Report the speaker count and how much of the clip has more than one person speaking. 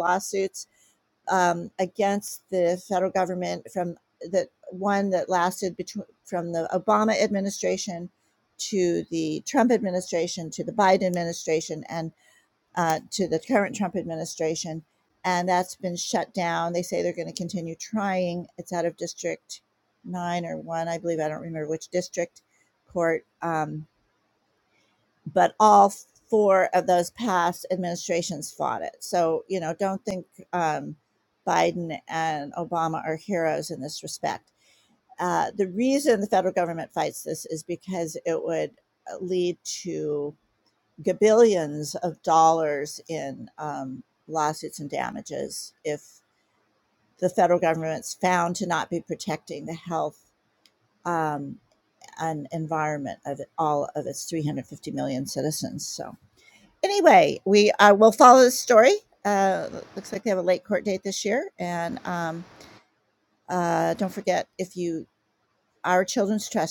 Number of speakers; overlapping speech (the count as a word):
one, no overlap